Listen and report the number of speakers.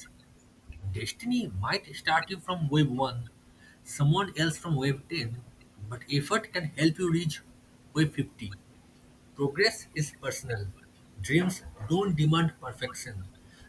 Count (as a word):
one